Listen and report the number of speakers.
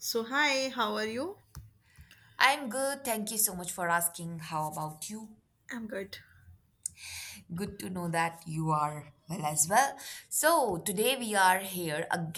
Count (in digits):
2